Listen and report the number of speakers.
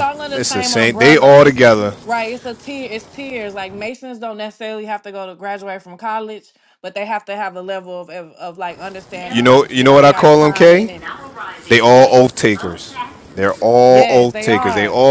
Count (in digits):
2